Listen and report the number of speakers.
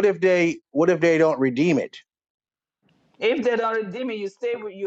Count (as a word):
two